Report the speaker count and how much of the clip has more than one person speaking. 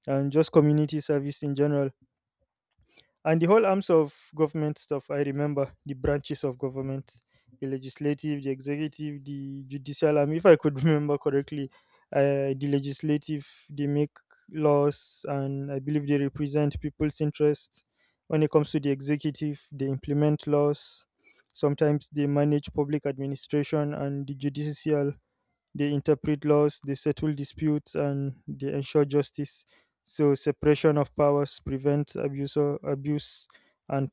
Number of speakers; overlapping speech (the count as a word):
one, no overlap